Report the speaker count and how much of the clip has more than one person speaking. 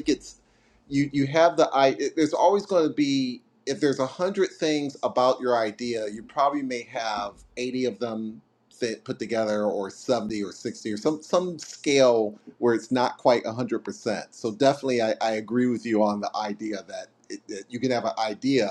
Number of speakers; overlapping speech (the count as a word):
one, no overlap